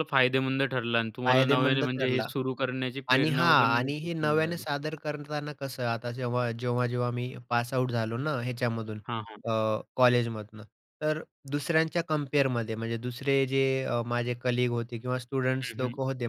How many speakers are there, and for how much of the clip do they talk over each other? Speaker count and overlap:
2, about 18%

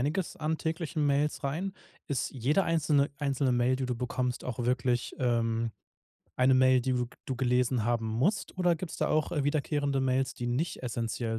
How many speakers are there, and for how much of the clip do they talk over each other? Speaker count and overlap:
1, no overlap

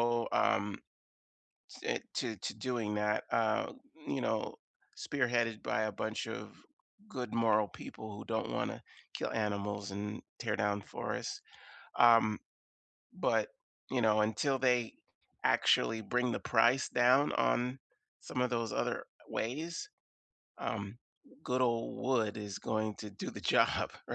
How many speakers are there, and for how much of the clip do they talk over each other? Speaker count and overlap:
1, no overlap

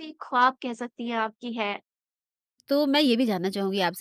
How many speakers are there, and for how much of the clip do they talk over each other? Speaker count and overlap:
2, no overlap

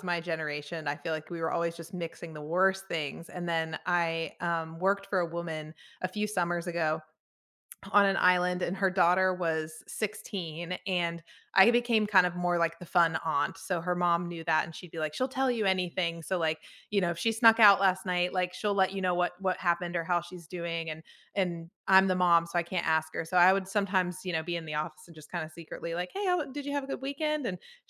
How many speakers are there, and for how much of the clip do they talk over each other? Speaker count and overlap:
1, no overlap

